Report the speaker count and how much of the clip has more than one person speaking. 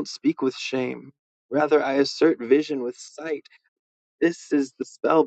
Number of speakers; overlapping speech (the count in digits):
1, no overlap